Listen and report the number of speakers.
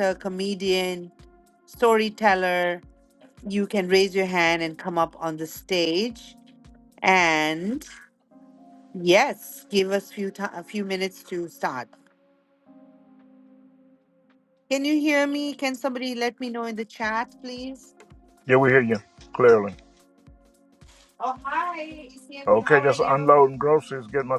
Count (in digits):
2